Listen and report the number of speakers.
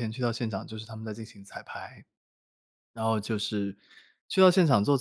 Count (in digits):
1